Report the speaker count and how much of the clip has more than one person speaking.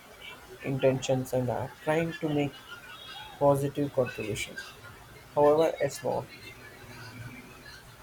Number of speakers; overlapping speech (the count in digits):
1, no overlap